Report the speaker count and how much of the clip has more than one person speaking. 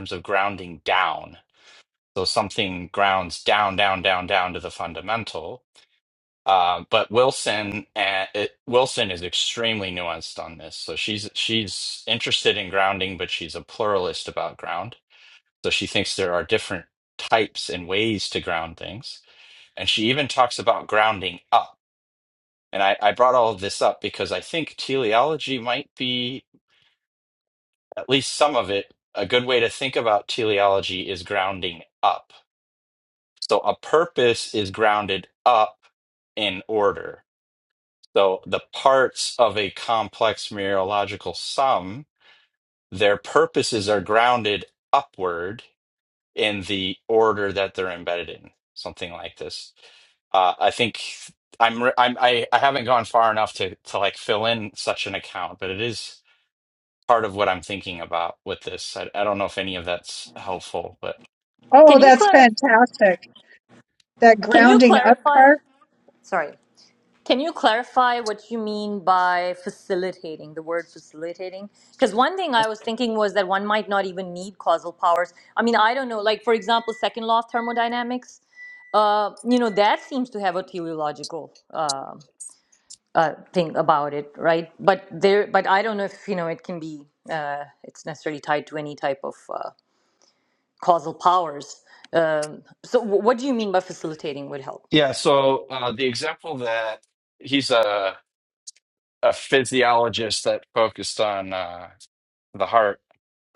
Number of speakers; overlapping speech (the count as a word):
three, about 2%